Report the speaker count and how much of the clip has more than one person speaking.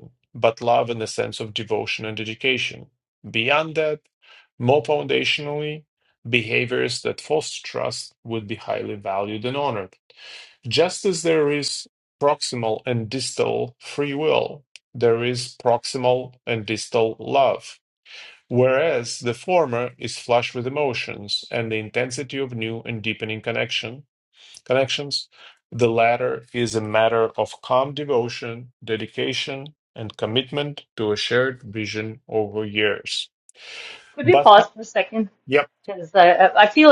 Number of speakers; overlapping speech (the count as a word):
two, about 1%